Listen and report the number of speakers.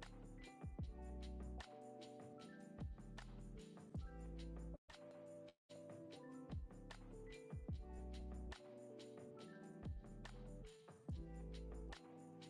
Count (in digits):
0